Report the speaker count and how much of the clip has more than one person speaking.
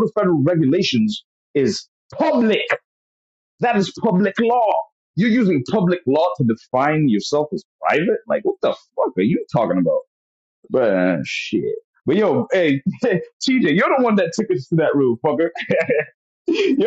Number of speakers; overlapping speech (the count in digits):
1, no overlap